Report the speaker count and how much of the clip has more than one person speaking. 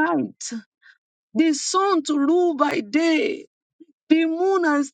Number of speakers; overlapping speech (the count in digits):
1, no overlap